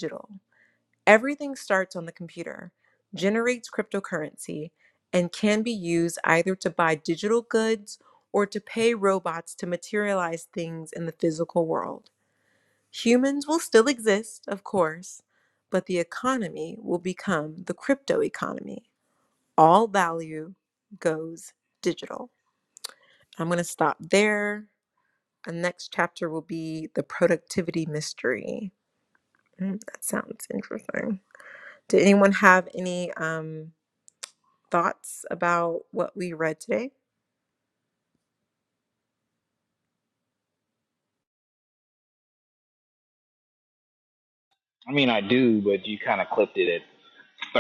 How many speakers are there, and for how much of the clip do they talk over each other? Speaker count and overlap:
two, no overlap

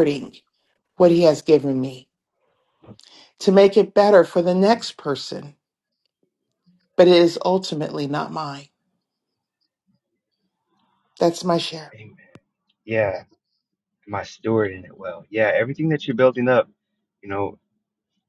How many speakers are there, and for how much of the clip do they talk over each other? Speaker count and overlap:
two, no overlap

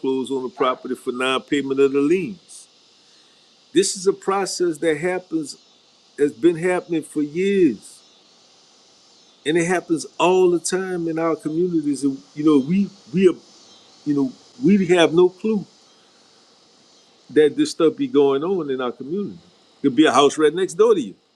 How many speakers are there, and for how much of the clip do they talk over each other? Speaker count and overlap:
one, no overlap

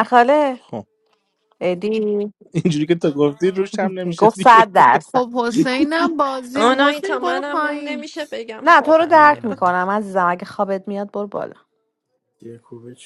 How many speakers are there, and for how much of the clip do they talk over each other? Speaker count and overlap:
five, about 24%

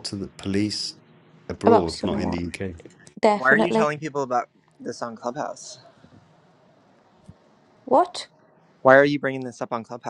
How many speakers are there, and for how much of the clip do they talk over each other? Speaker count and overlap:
three, about 13%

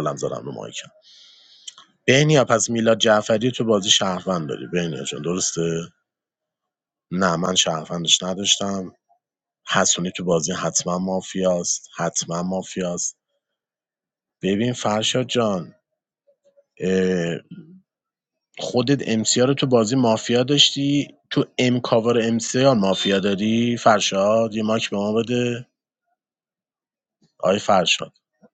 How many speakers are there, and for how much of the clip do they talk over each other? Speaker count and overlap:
one, no overlap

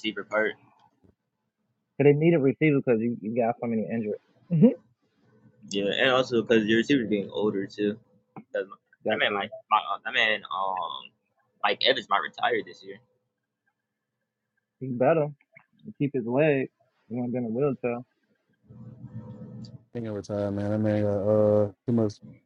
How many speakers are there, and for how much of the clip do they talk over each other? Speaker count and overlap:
three, about 2%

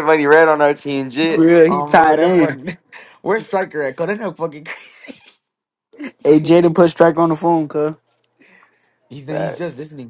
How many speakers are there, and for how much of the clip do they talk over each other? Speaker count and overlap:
three, about 13%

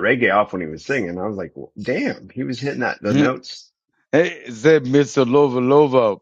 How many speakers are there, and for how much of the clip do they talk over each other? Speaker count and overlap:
two, about 4%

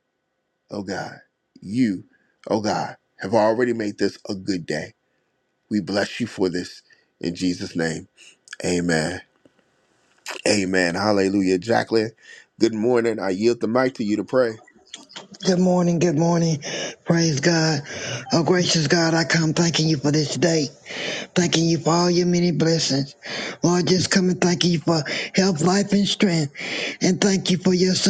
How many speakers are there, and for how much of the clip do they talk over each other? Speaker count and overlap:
two, no overlap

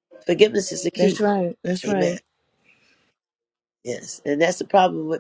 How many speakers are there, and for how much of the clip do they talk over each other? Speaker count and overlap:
two, about 13%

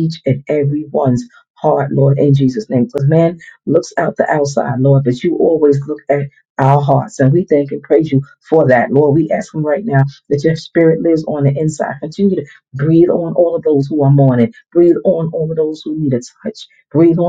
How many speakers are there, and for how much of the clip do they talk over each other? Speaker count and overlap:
one, no overlap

